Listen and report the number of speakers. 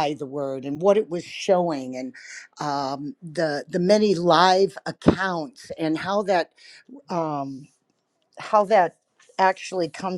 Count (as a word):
one